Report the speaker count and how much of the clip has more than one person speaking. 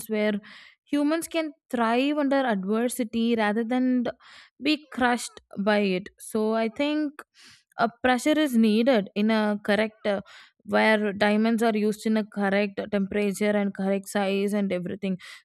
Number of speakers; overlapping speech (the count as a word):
one, no overlap